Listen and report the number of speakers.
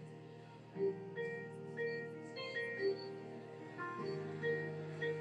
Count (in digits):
0